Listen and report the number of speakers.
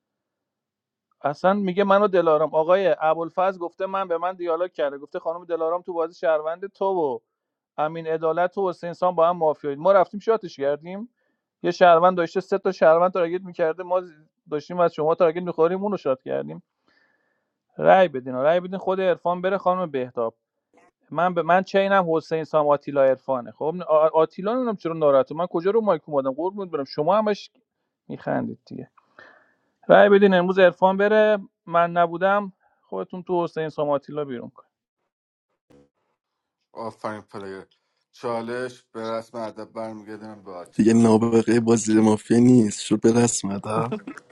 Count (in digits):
3